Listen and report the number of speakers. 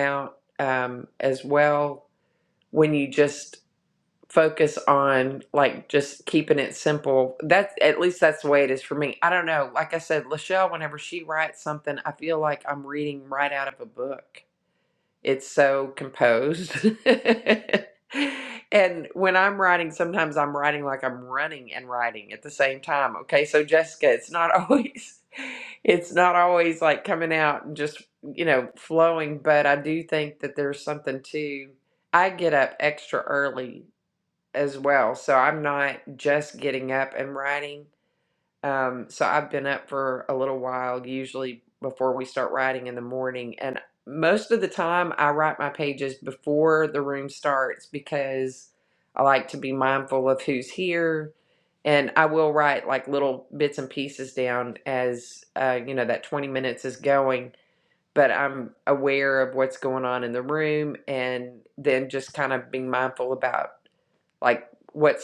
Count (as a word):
one